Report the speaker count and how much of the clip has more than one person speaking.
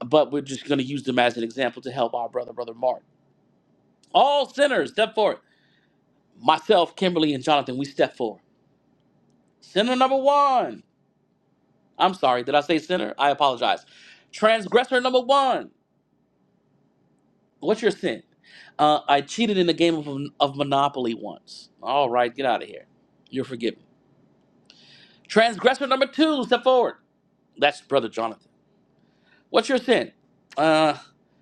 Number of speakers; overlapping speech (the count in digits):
1, no overlap